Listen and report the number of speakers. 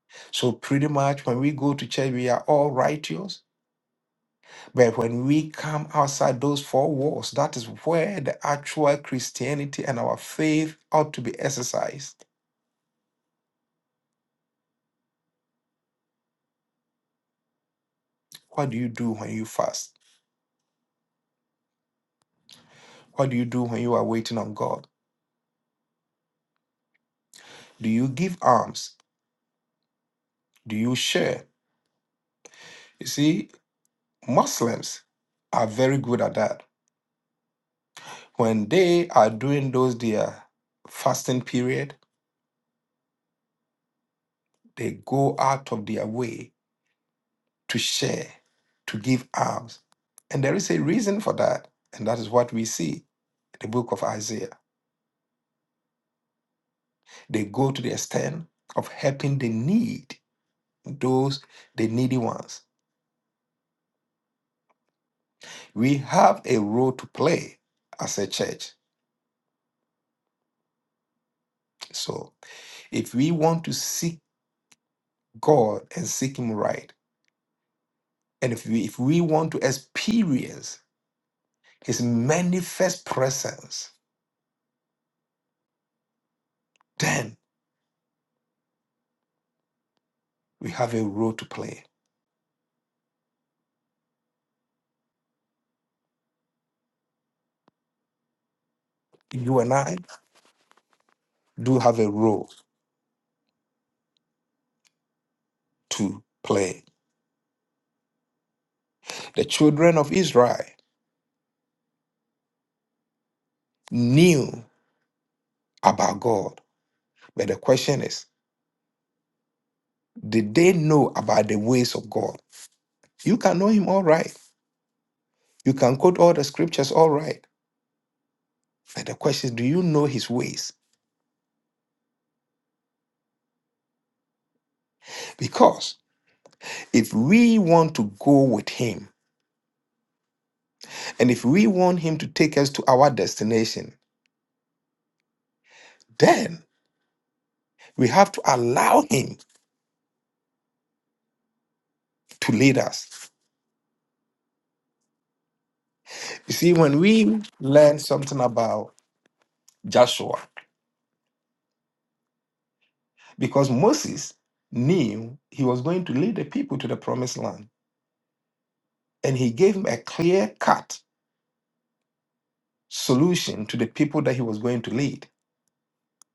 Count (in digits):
1